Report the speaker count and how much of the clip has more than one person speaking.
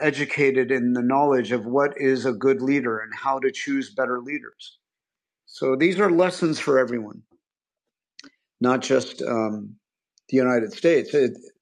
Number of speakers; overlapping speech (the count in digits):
1, no overlap